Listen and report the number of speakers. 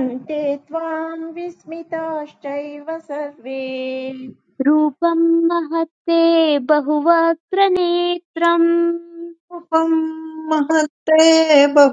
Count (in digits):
3